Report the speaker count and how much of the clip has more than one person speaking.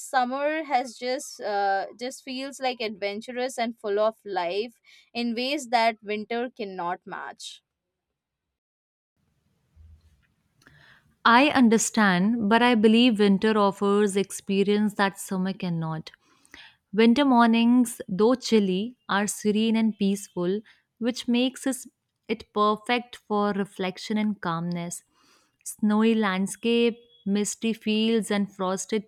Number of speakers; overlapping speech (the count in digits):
2, no overlap